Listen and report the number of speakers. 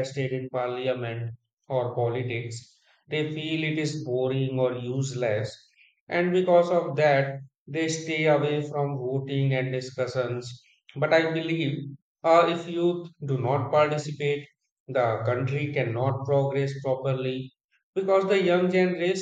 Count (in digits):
1